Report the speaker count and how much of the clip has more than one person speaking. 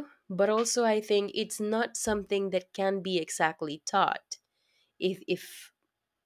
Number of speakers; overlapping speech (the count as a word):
one, no overlap